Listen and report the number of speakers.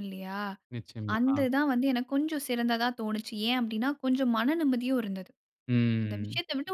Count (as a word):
two